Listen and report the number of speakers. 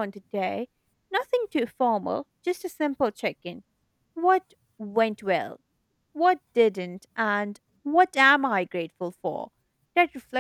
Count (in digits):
1